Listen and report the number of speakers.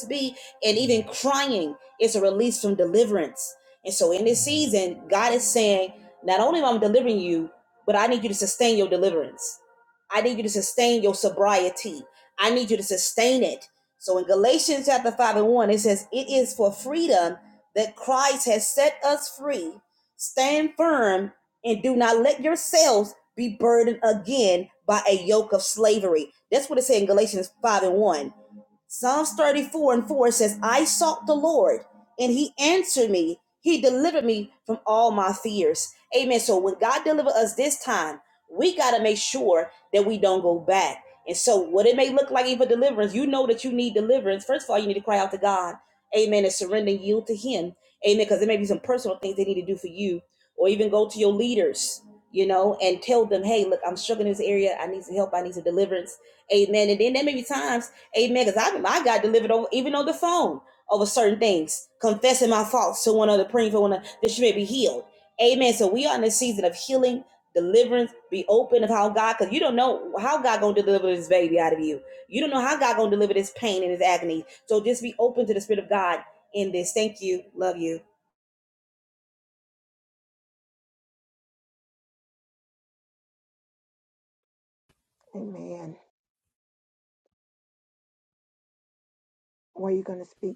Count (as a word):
two